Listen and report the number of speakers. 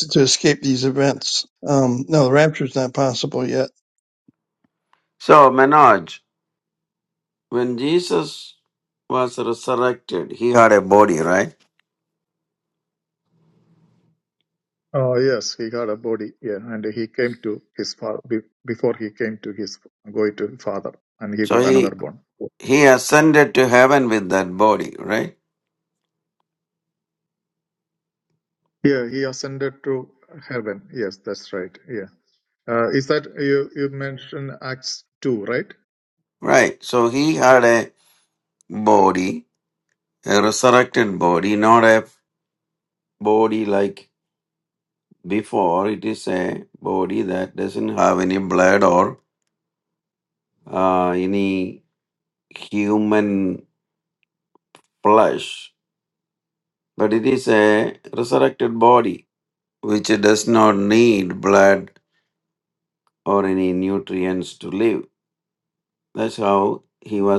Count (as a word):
three